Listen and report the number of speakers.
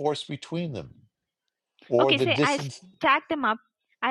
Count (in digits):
2